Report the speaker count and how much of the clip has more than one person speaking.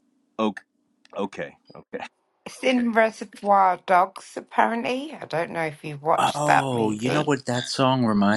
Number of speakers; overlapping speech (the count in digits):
3, about 13%